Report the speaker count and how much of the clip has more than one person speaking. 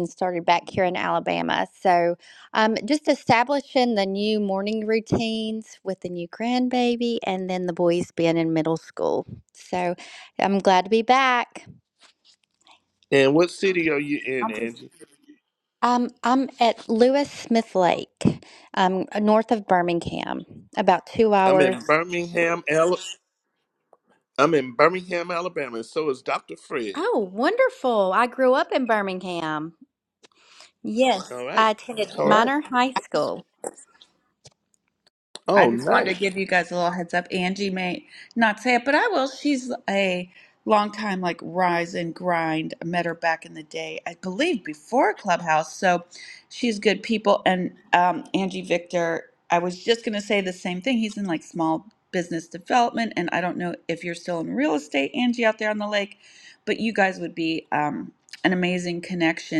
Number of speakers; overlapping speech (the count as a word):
three, about 3%